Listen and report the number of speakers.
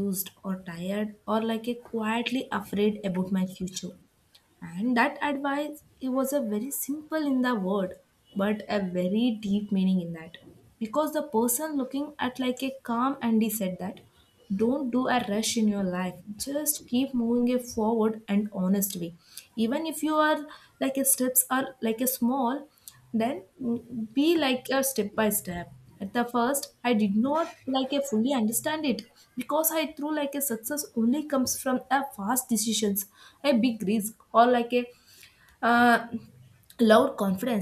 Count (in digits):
1